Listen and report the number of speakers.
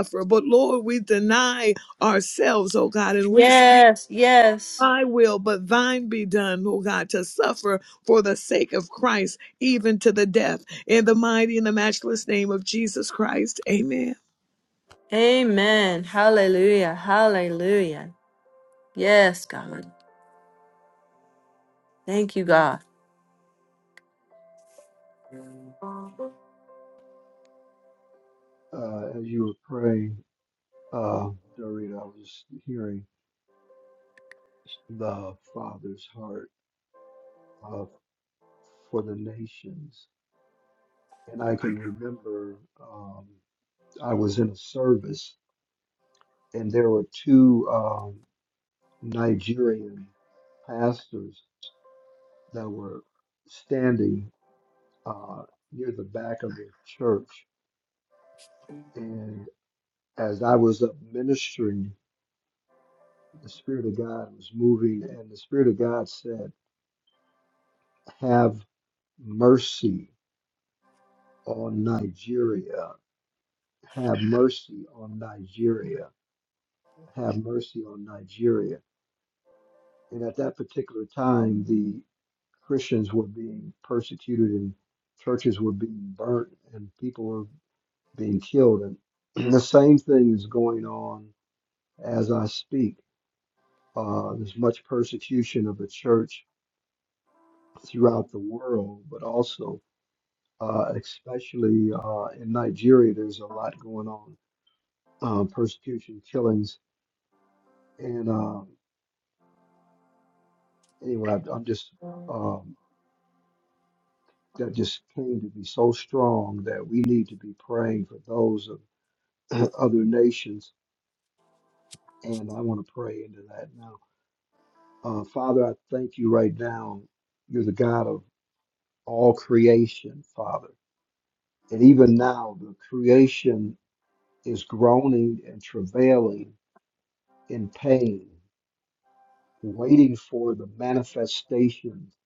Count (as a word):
three